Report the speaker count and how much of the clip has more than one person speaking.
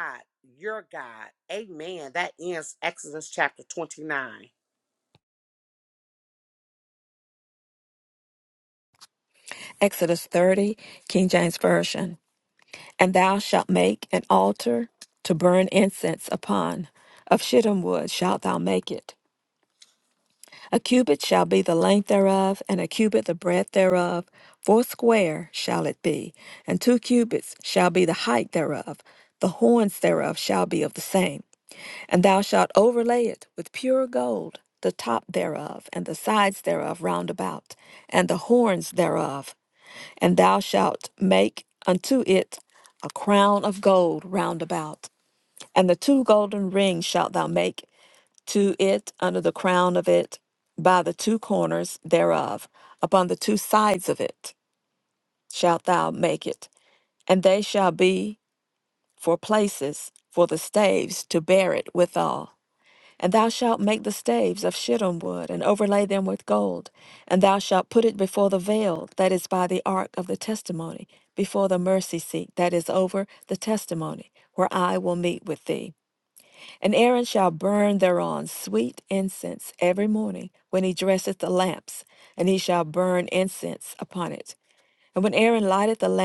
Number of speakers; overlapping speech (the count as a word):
two, no overlap